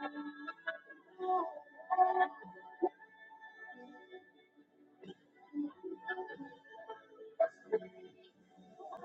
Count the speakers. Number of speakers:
zero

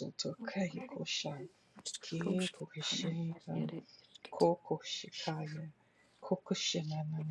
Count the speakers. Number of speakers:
two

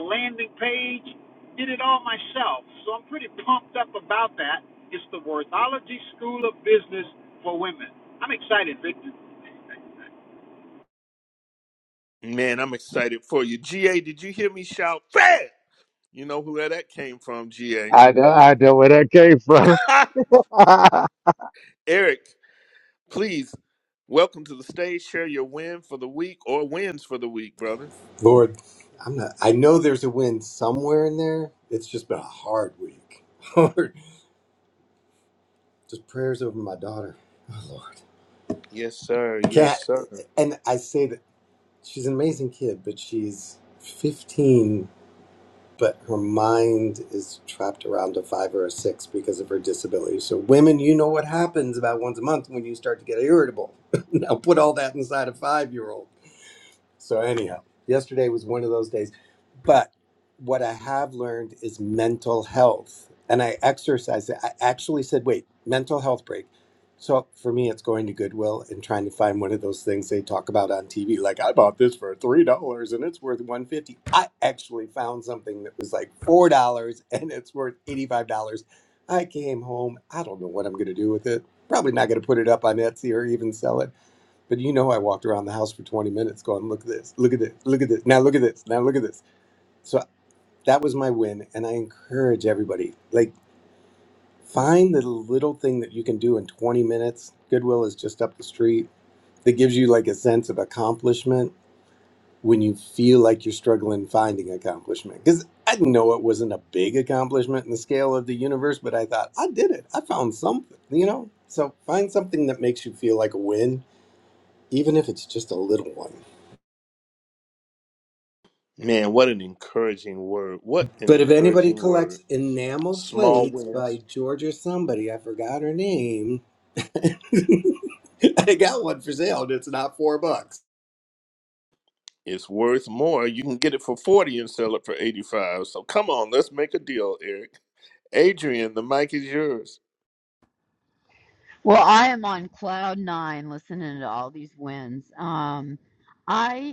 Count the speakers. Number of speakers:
five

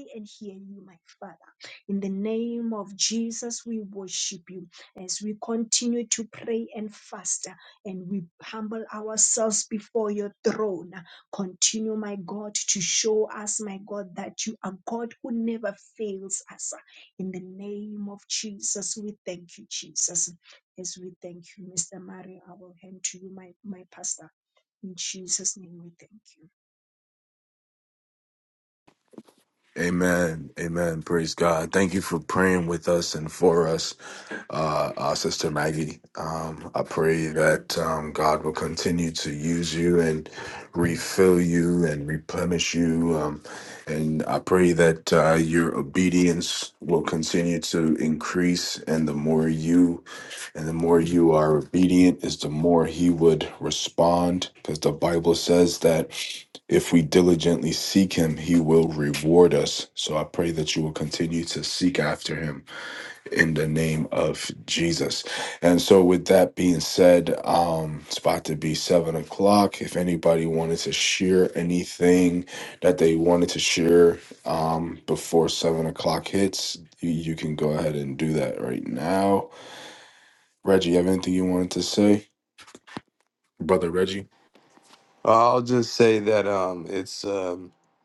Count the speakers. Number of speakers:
three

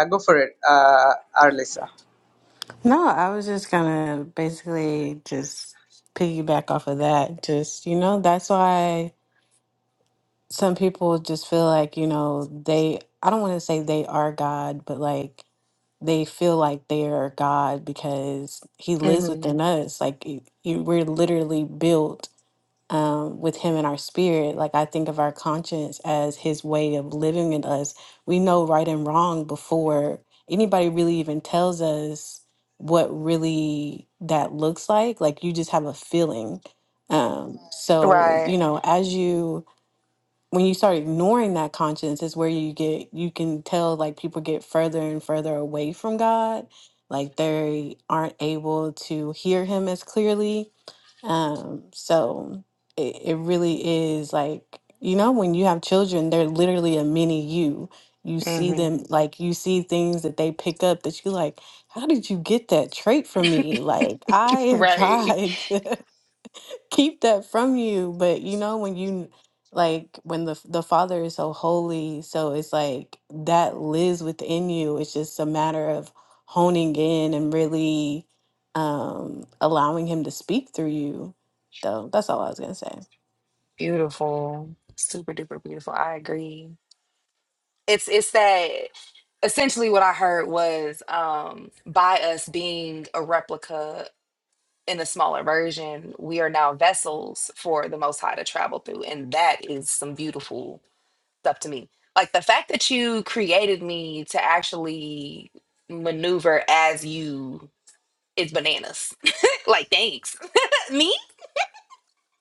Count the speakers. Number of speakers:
three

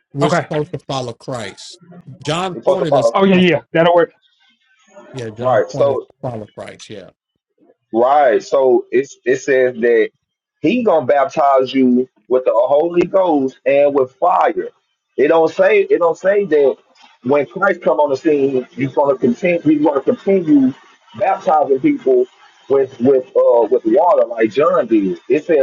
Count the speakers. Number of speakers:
three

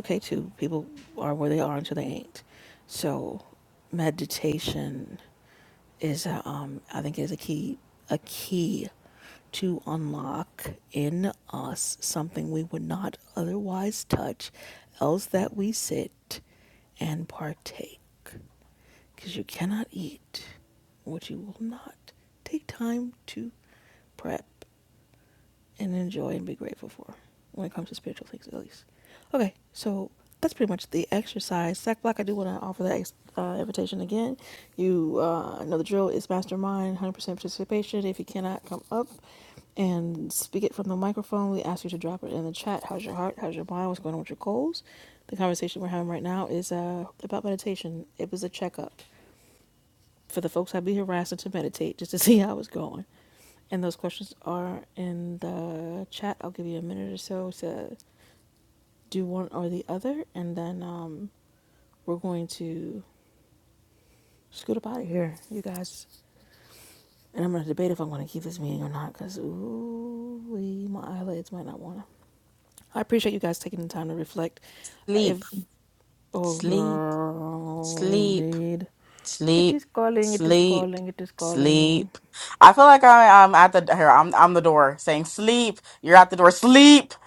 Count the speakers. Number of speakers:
two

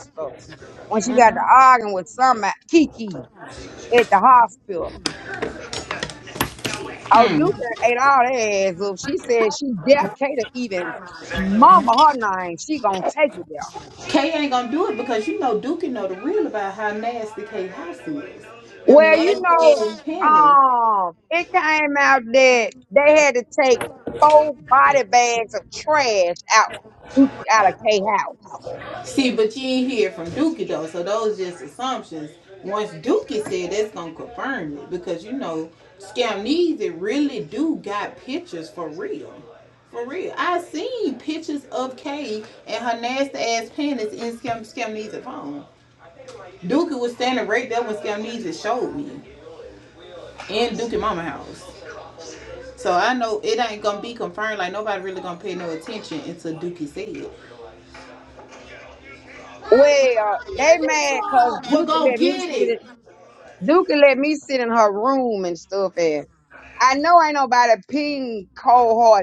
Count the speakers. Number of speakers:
two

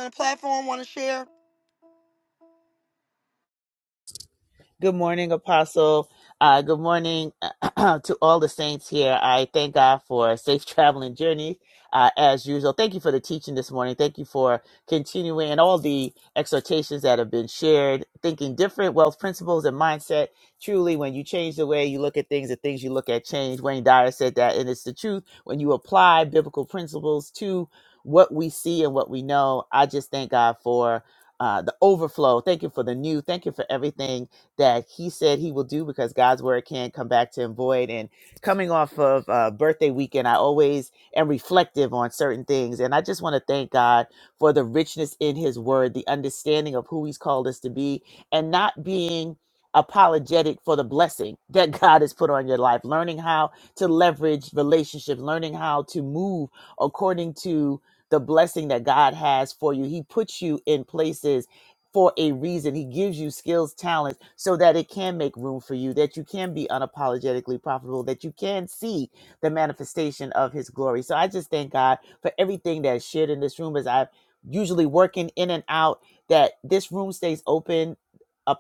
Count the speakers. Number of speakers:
two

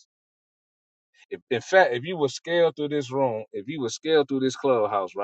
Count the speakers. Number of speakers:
one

